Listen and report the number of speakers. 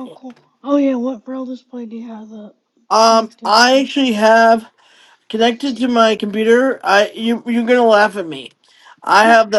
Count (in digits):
2